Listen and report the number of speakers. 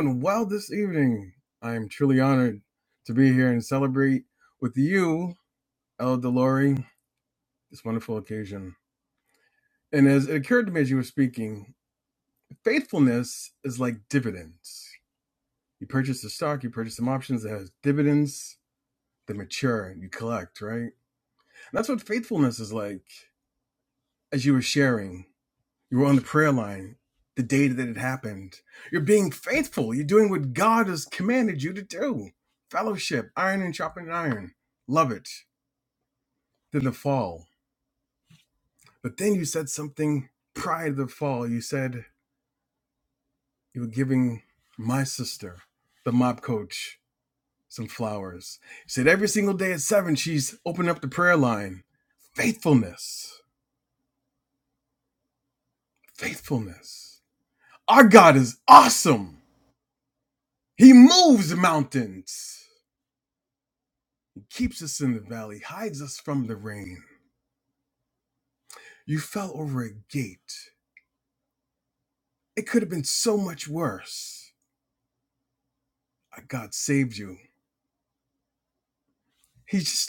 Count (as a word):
one